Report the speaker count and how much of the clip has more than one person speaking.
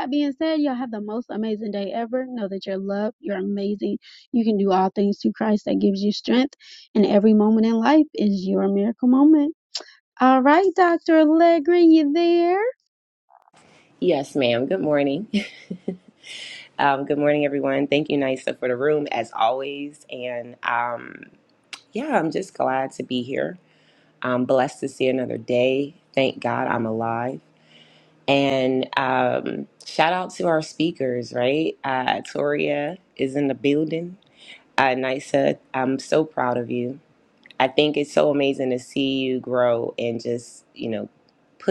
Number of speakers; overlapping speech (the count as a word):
two, no overlap